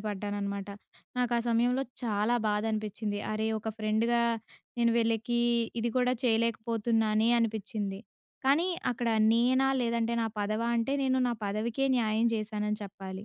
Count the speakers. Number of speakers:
1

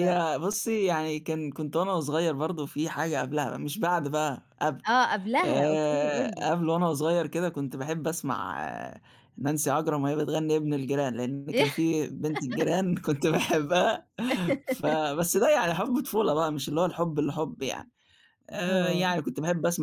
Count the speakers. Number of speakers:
2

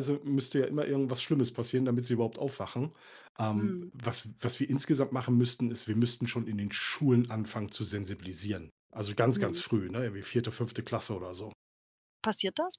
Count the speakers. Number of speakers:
2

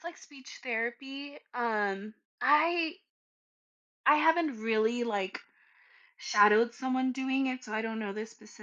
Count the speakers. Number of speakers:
1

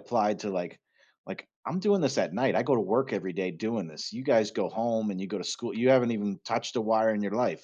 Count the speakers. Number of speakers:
1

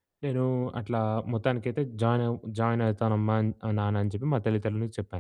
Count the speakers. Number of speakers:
1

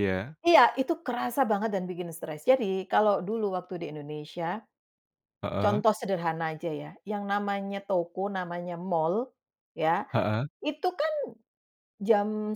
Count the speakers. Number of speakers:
2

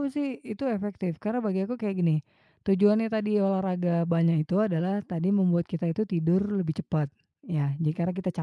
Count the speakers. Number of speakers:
1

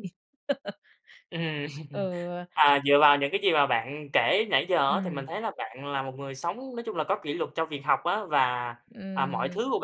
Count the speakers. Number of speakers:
2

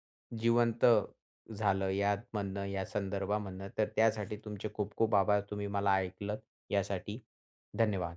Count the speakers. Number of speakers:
1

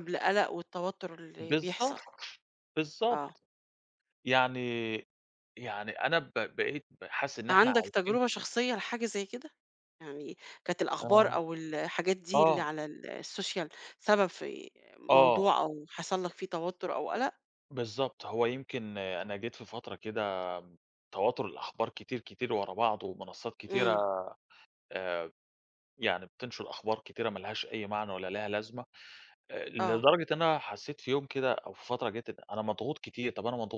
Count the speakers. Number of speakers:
2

